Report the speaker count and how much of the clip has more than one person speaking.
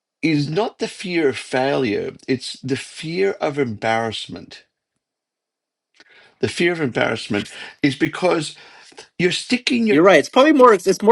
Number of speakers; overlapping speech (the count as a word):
two, about 1%